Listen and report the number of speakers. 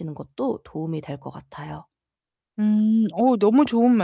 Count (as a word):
two